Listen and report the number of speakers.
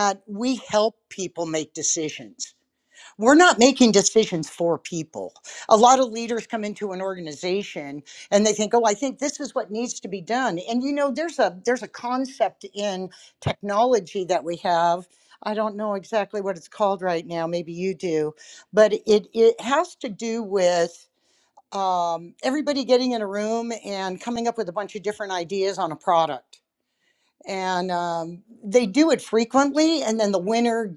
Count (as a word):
one